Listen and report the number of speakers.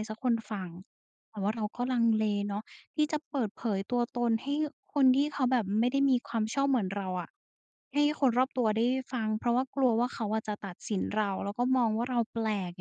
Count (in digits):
1